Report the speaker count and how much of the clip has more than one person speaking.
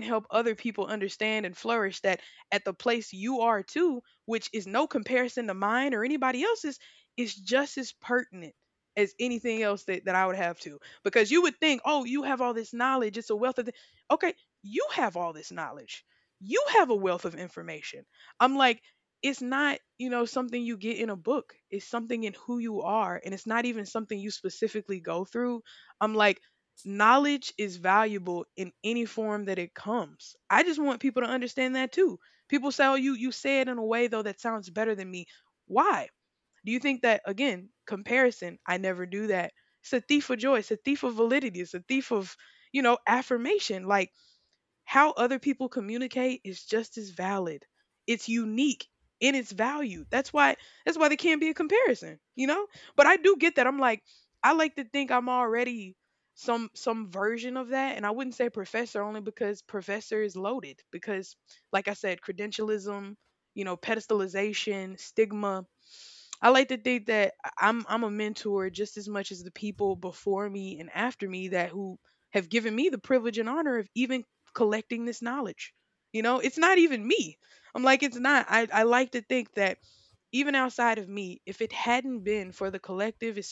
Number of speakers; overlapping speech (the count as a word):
one, no overlap